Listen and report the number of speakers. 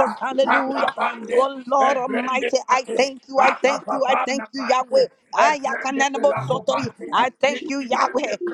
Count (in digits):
2